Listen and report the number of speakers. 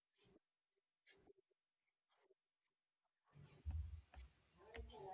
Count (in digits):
0